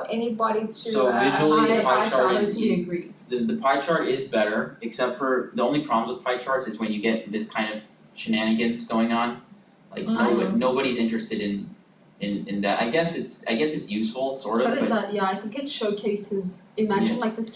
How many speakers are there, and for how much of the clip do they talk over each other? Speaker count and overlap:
3, about 16%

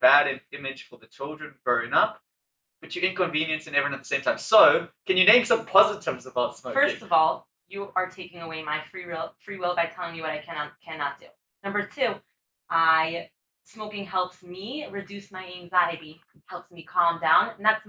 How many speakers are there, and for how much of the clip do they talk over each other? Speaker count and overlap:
2, about 3%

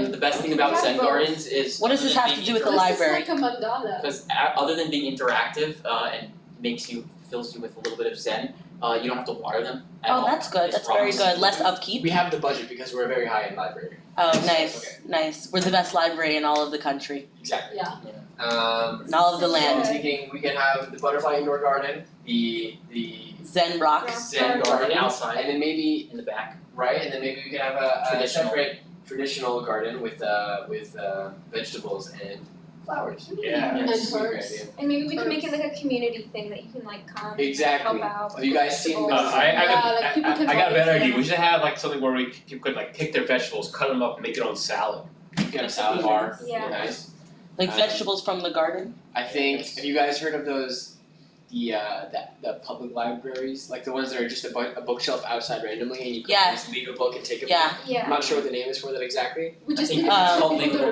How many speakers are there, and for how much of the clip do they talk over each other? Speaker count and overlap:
6, about 31%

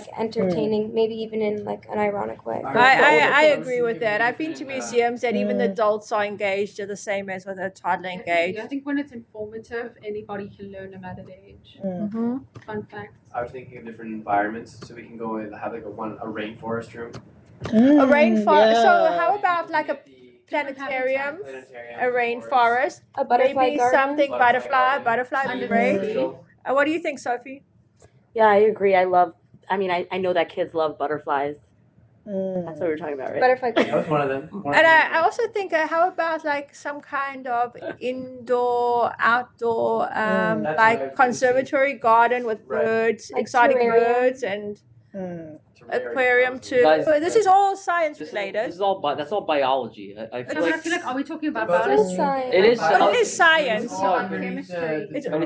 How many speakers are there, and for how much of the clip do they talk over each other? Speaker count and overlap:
7, about 39%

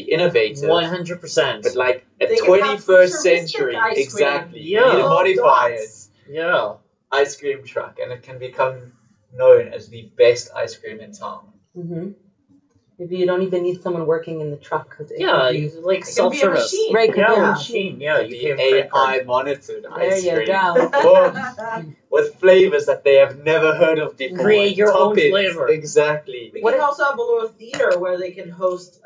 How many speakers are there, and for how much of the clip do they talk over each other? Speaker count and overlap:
4, about 36%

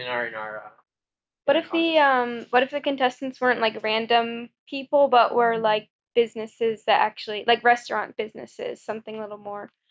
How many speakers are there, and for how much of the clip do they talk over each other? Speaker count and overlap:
2, about 5%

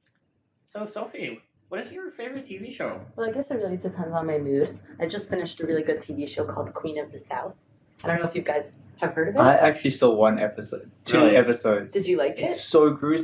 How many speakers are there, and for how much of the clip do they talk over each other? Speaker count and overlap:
3, about 5%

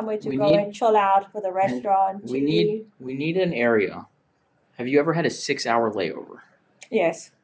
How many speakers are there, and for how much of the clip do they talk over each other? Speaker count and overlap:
2, about 19%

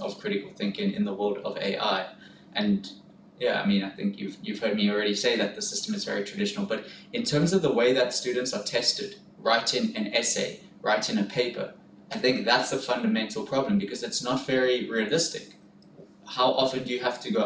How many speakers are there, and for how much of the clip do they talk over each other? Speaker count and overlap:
1, no overlap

